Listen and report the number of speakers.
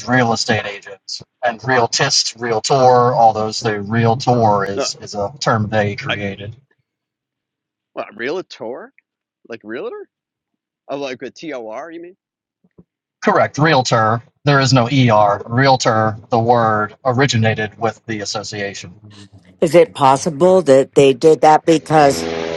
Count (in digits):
3